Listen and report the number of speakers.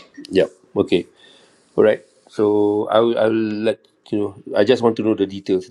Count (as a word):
one